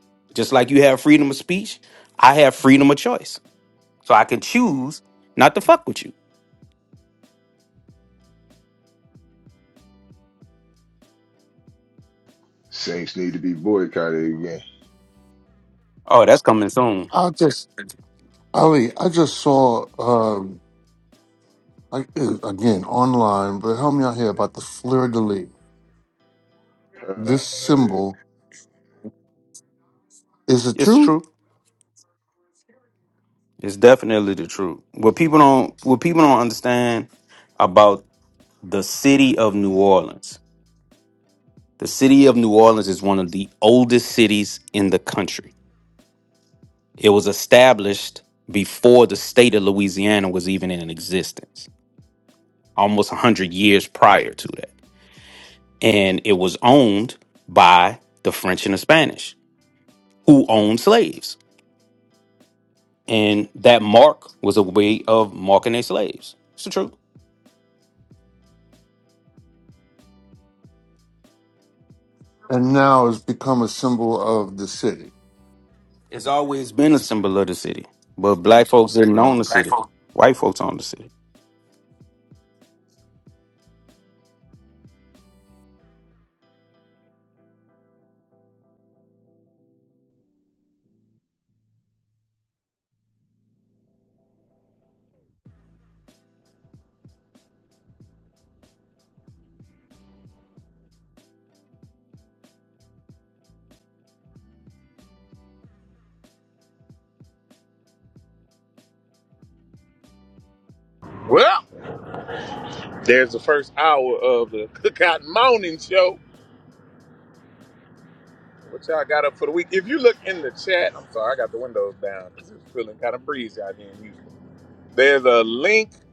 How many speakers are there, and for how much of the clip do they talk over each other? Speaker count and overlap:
4, about 1%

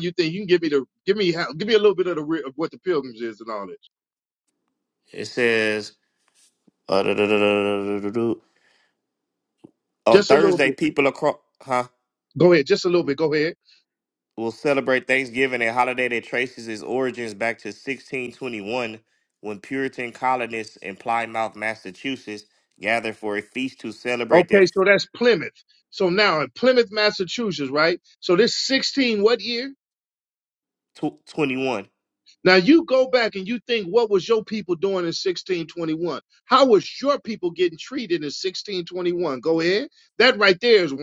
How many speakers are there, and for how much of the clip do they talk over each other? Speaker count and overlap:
2, about 2%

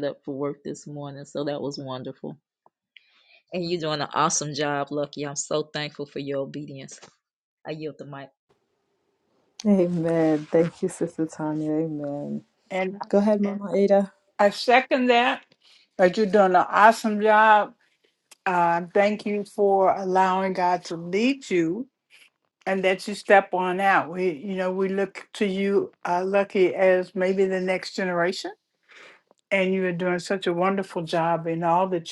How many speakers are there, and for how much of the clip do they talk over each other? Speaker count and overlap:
3, no overlap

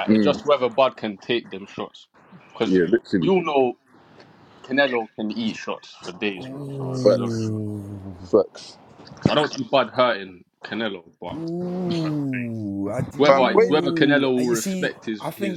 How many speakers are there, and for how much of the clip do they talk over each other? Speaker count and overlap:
3, about 29%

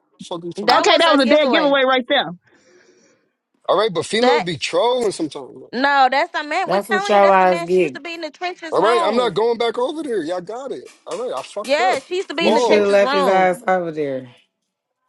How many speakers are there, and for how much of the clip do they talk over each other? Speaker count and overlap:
4, about 31%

